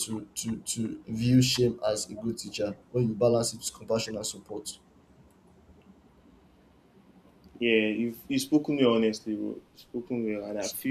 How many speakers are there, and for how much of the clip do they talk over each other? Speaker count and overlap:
two, no overlap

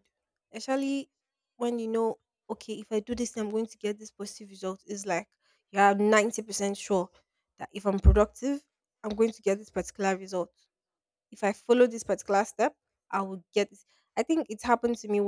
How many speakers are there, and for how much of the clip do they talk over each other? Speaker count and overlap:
one, no overlap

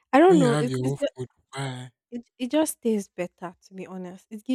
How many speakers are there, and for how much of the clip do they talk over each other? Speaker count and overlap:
two, about 18%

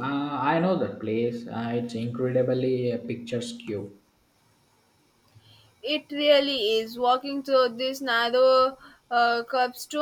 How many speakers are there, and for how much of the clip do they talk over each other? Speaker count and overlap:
two, no overlap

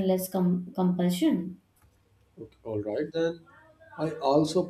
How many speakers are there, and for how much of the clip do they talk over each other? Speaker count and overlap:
two, no overlap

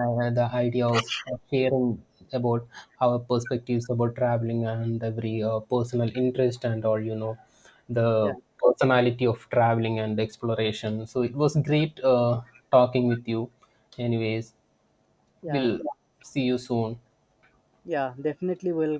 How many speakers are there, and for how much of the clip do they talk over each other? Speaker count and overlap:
two, about 2%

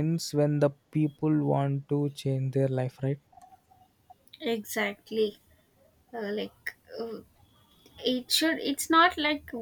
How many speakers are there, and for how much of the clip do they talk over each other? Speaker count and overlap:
two, no overlap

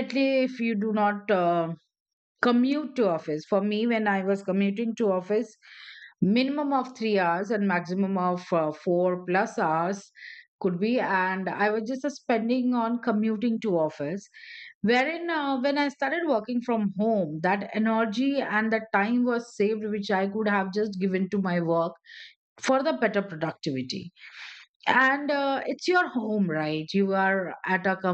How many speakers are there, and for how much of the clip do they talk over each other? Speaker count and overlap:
one, no overlap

